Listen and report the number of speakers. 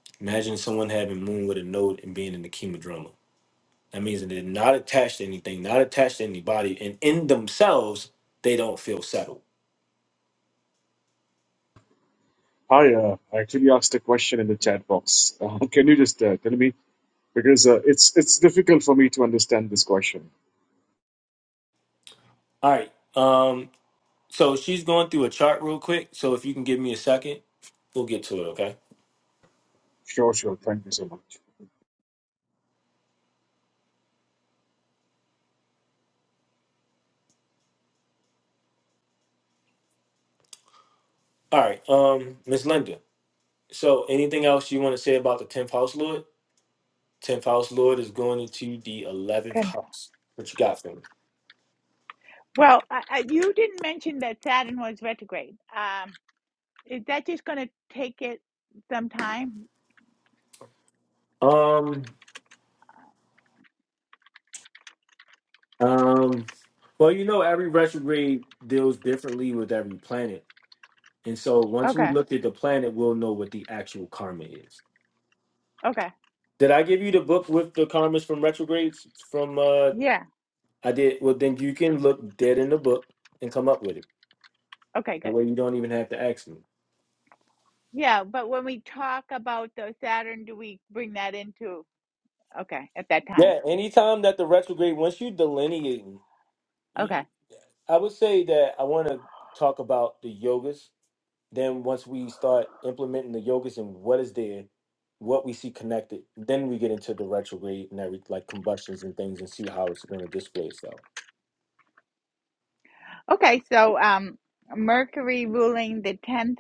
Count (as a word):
three